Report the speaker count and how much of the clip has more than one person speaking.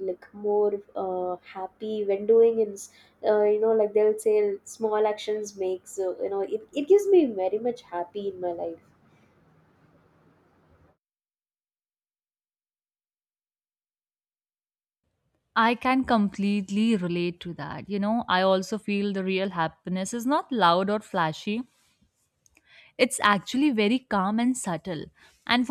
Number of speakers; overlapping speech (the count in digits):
2, no overlap